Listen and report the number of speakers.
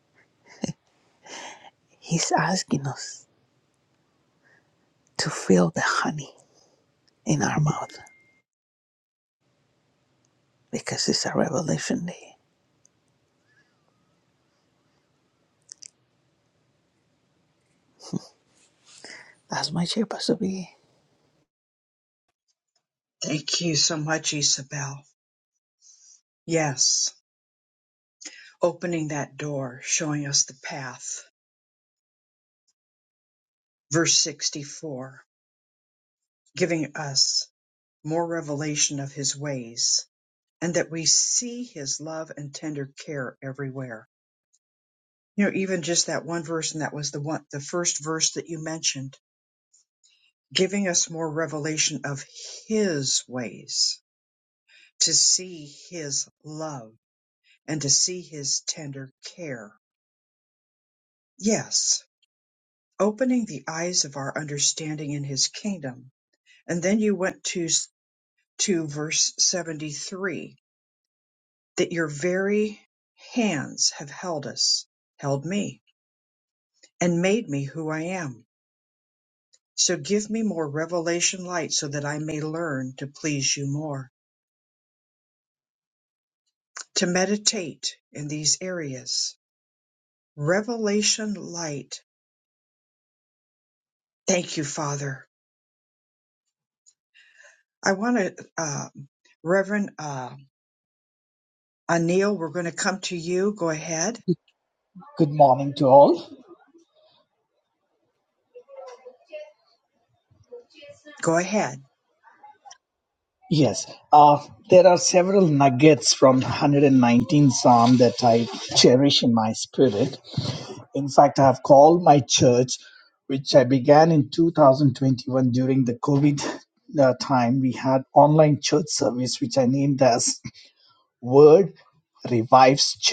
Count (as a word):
three